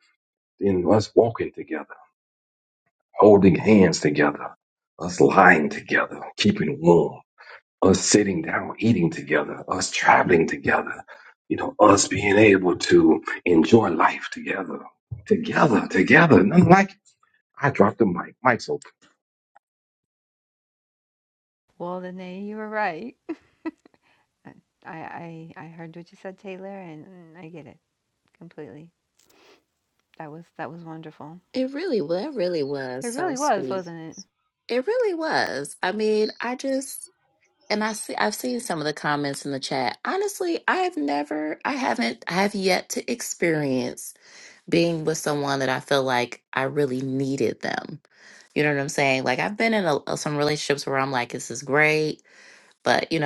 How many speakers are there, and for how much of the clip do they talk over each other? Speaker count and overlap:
3, about 1%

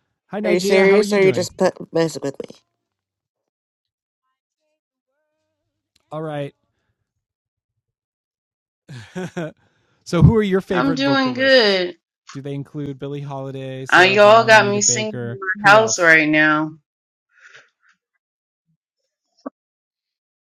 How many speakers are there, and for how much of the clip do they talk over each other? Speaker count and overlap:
3, about 19%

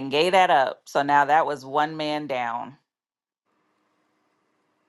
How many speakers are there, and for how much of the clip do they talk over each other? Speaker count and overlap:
1, no overlap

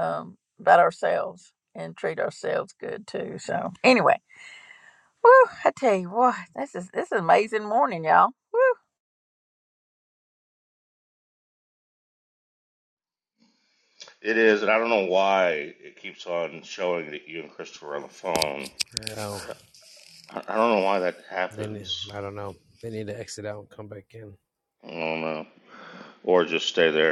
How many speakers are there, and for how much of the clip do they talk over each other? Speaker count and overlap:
3, about 3%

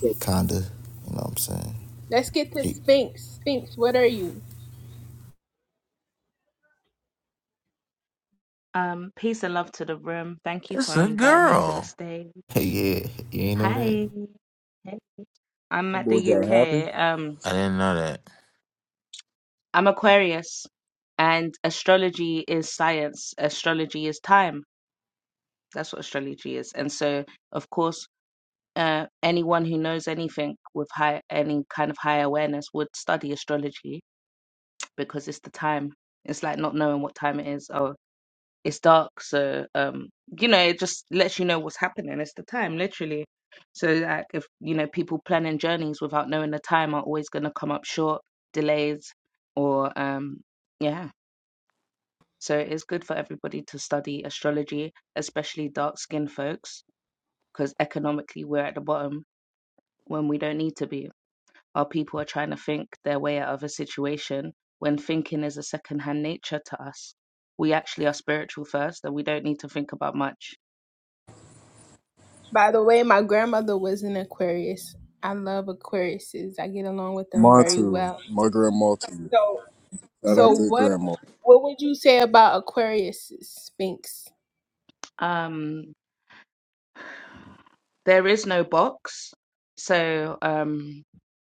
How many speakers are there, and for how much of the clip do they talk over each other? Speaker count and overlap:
5, about 5%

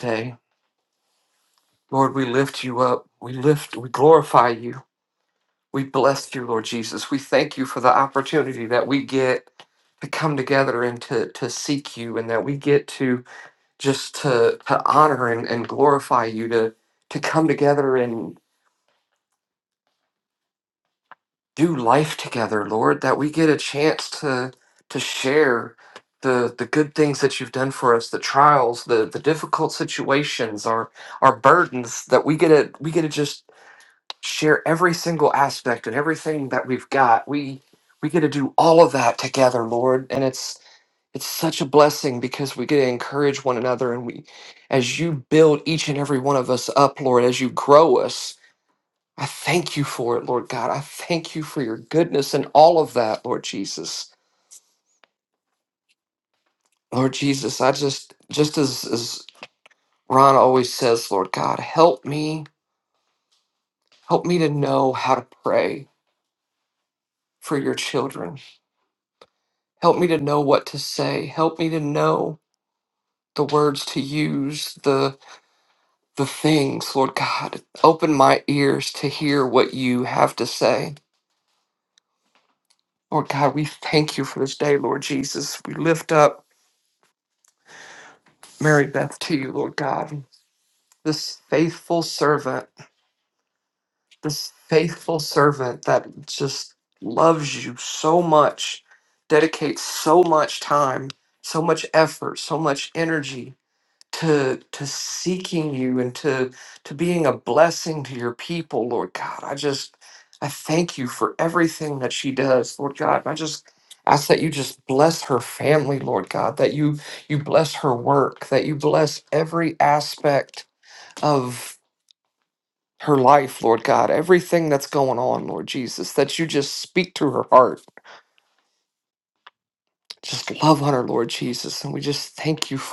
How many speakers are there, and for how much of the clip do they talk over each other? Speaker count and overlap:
1, no overlap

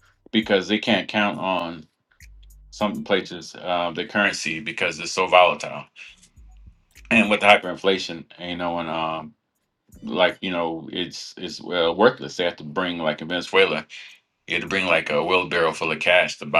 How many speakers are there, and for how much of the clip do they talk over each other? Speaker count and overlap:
1, no overlap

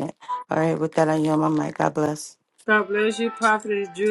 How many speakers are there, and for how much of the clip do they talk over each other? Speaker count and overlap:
2, no overlap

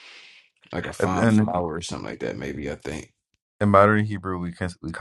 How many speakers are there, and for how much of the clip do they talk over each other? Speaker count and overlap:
2, about 10%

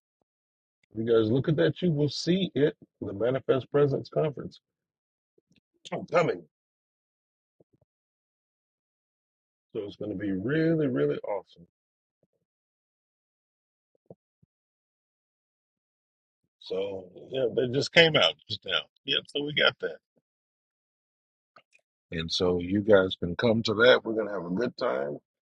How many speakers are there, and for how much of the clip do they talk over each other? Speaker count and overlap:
1, no overlap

